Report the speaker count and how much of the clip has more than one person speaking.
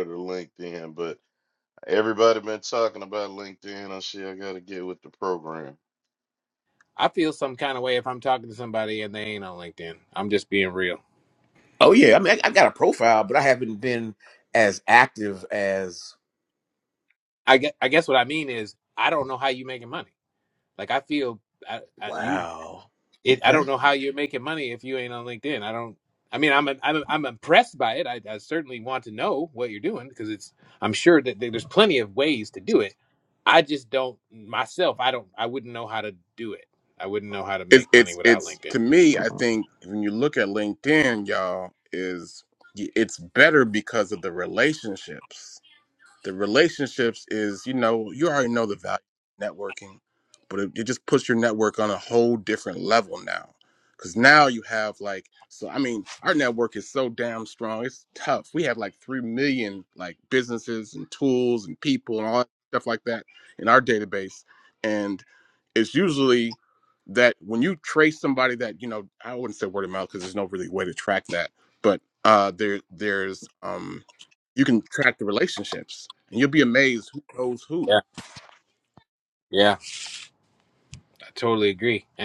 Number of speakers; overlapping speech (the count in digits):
4, about 2%